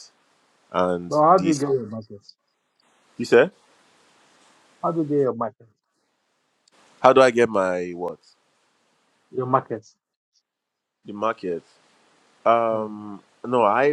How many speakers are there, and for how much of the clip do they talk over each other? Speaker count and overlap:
2, about 5%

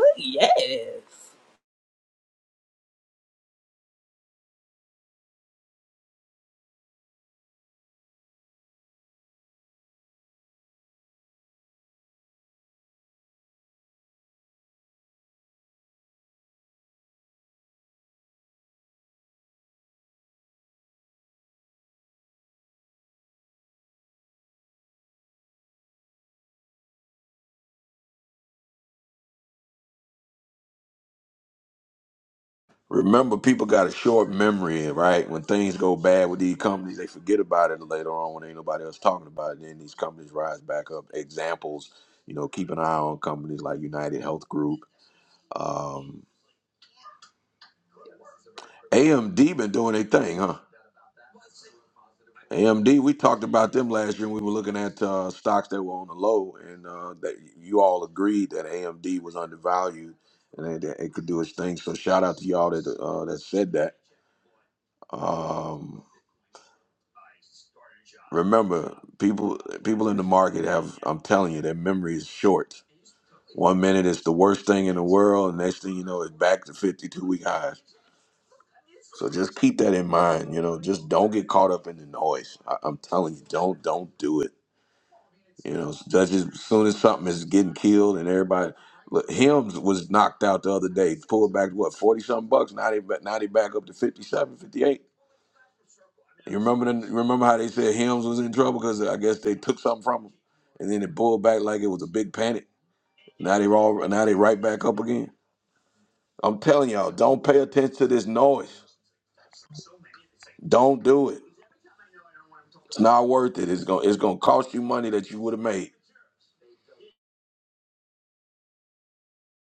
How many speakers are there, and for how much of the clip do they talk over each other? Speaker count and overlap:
2, no overlap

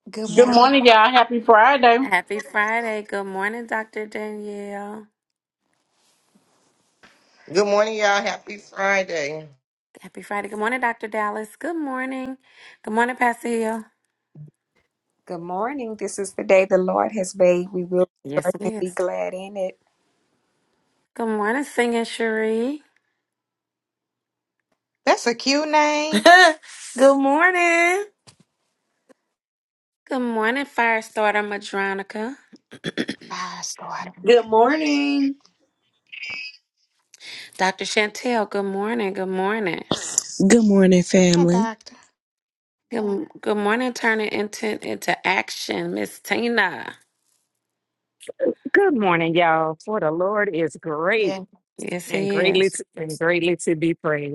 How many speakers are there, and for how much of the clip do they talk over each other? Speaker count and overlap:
9, about 3%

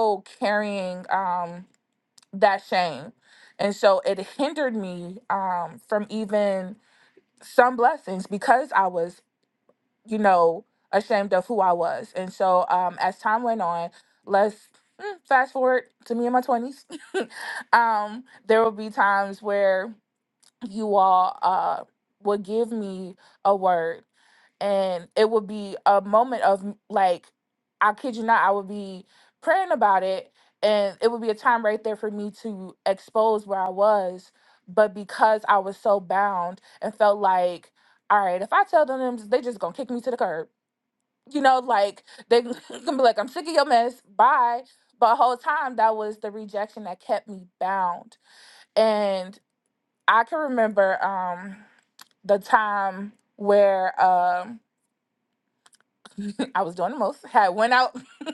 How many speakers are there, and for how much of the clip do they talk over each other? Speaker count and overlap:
1, no overlap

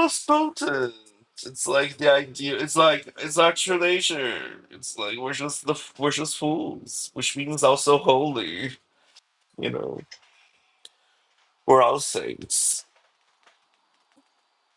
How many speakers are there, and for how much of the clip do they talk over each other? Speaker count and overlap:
1, no overlap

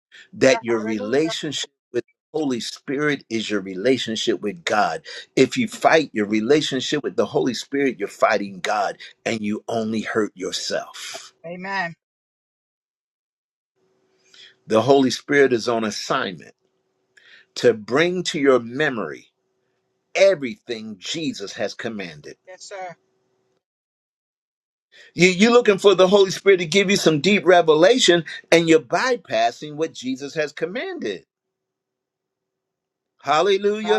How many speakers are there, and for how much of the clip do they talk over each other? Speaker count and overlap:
2, about 2%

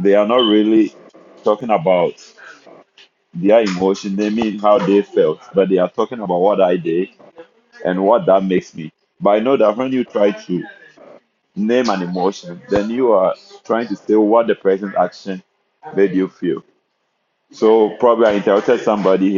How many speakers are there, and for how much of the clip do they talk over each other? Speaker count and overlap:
1, no overlap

